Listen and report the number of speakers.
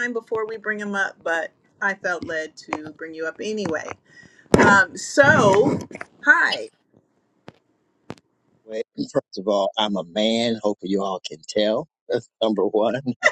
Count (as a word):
two